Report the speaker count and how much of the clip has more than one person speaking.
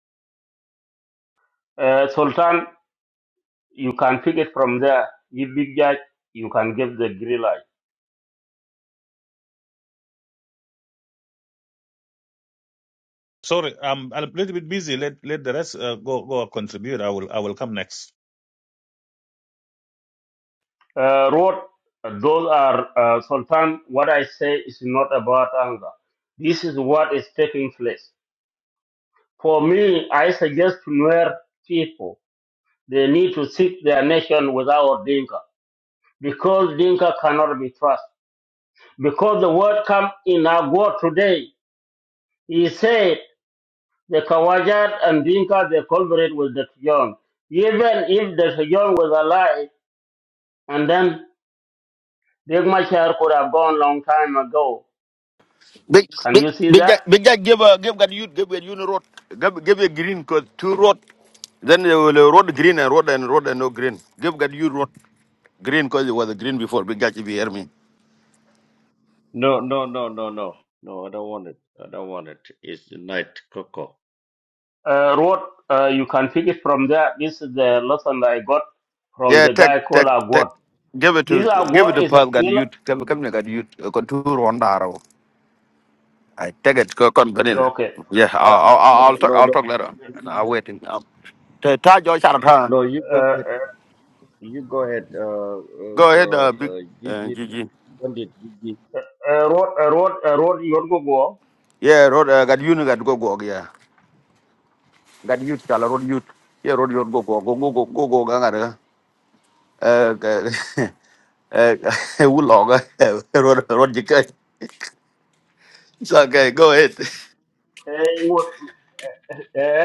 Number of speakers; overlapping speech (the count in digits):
4, about 5%